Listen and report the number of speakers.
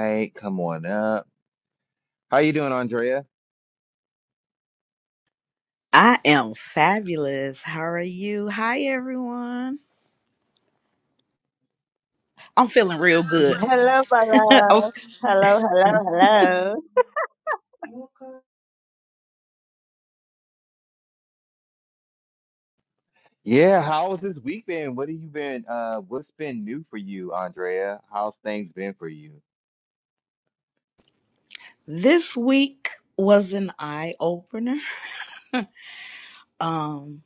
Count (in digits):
3